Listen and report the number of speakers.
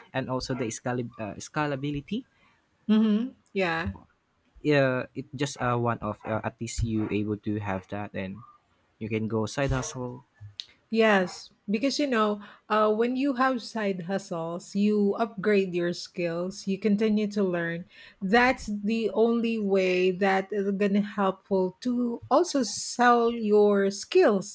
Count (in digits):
2